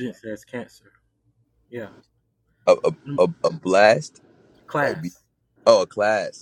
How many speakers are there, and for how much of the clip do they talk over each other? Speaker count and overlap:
2, about 6%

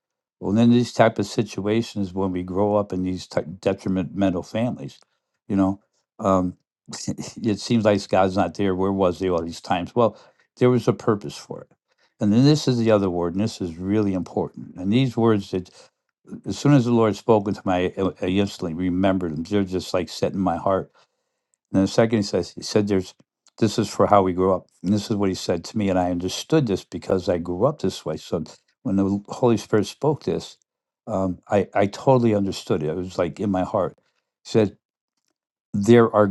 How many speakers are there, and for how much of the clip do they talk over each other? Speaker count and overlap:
1, no overlap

